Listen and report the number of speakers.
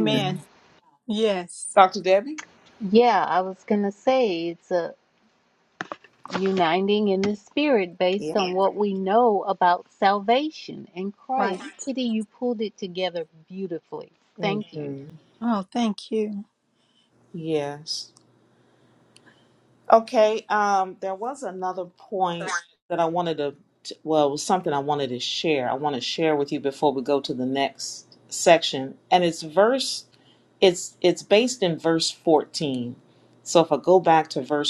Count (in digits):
3